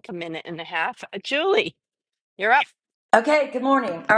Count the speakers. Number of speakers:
two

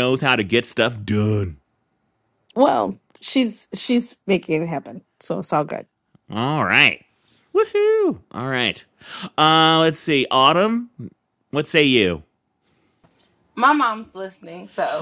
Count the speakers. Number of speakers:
three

